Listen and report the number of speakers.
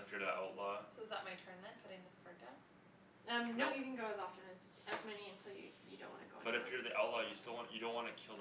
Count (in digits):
3